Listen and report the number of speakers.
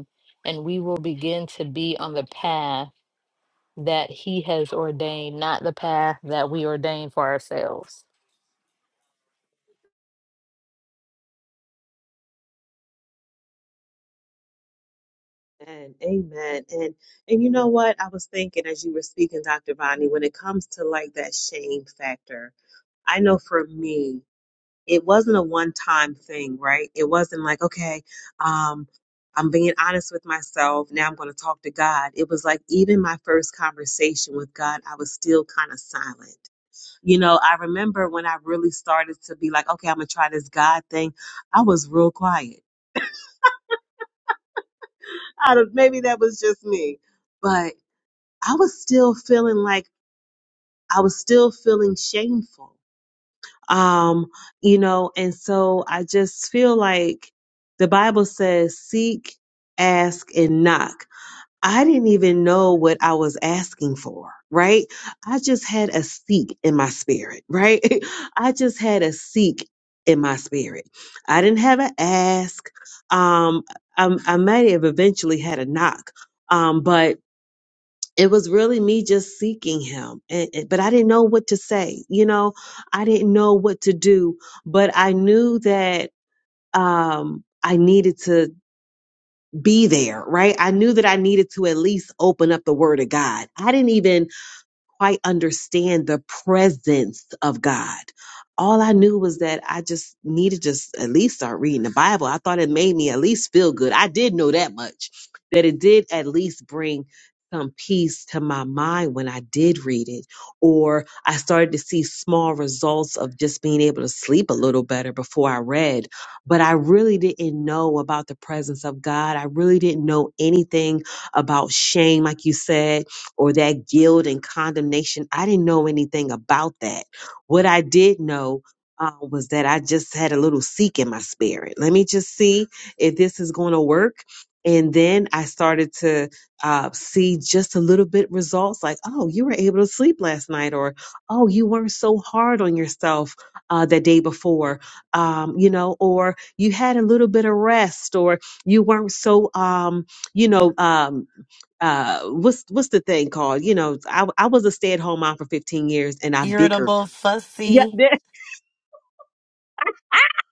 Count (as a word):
three